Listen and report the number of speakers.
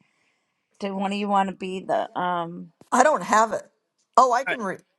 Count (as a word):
two